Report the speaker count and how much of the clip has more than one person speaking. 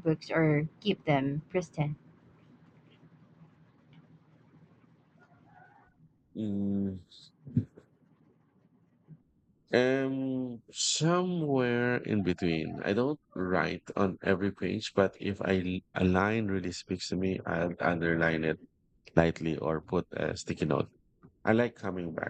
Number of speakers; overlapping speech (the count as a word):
two, no overlap